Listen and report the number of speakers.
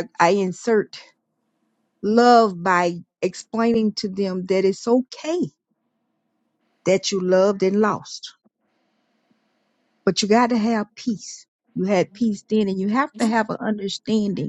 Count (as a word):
one